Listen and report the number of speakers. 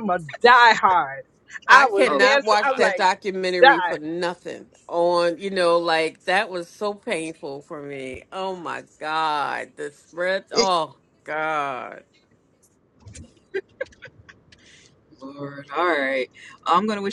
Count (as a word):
three